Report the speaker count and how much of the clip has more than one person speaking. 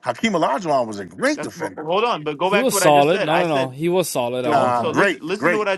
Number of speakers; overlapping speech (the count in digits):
3, about 51%